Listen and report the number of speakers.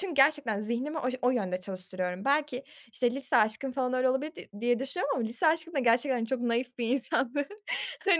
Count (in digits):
1